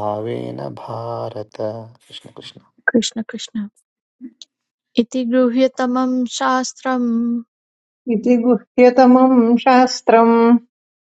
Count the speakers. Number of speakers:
3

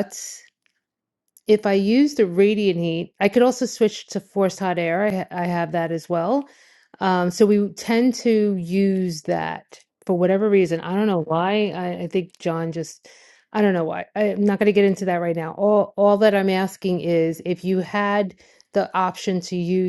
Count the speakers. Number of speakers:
1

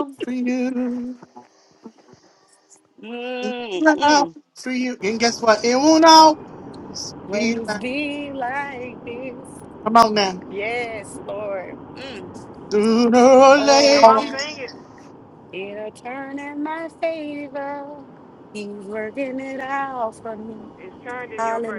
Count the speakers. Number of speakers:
3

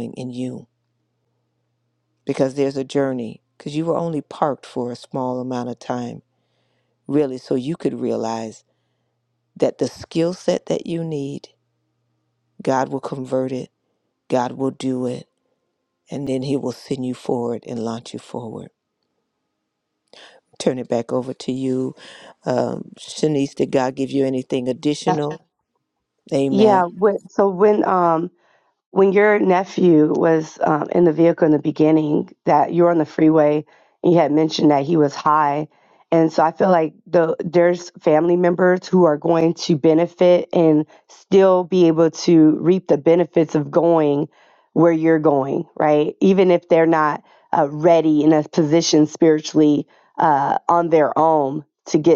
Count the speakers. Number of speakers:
2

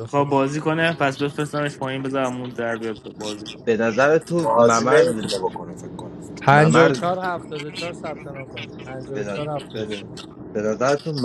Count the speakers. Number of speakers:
4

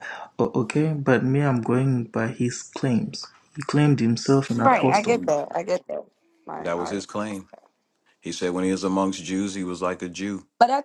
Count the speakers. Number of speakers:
3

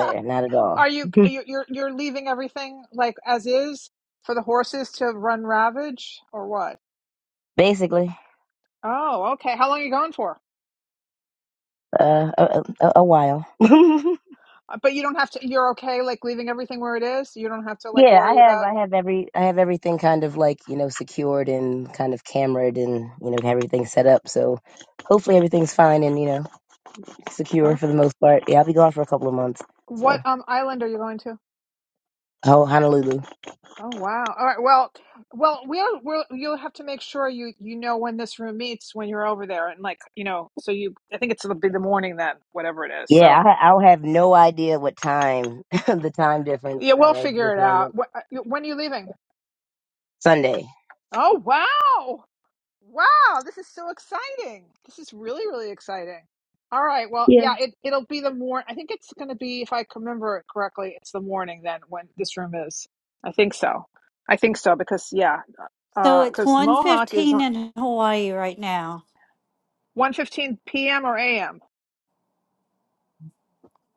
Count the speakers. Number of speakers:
3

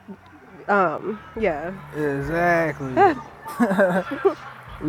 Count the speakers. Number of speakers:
2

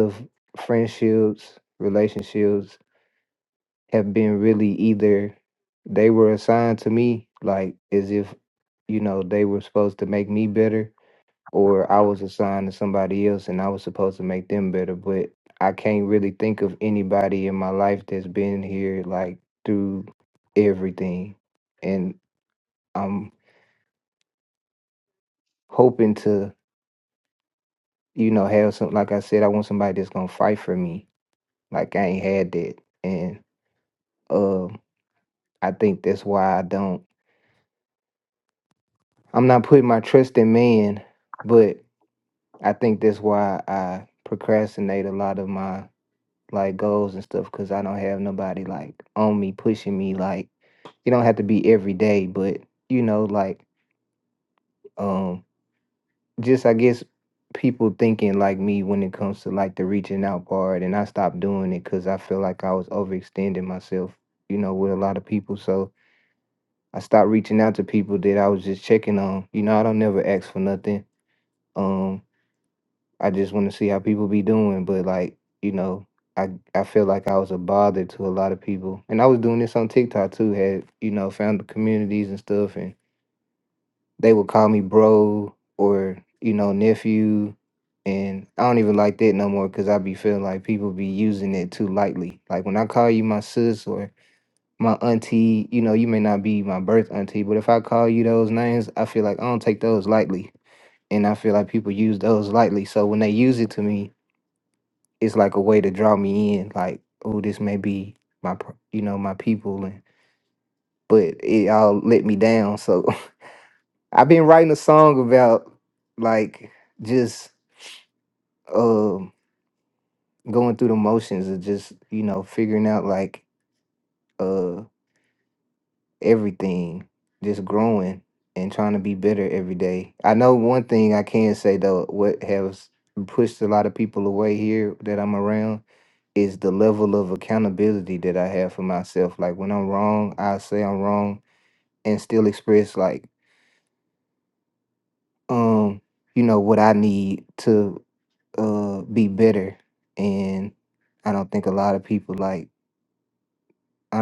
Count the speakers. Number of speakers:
1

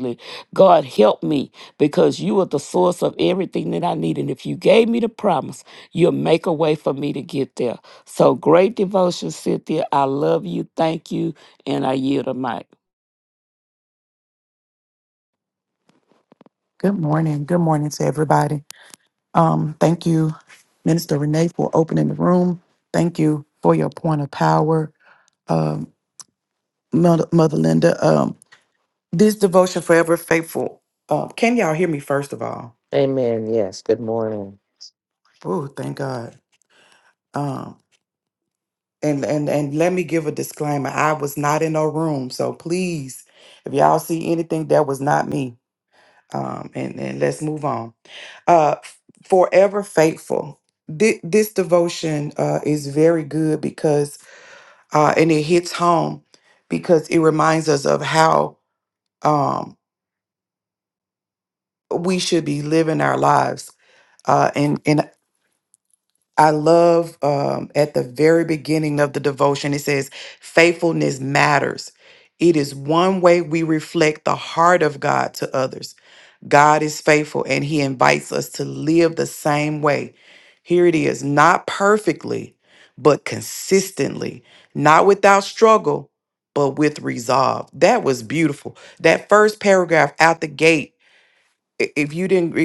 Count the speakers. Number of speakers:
3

